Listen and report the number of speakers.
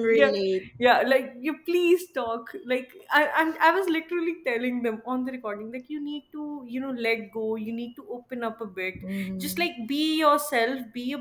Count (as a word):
two